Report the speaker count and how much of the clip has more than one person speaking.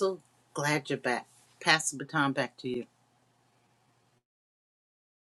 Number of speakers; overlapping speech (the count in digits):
1, no overlap